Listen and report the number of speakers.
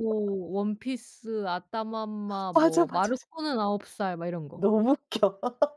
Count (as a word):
two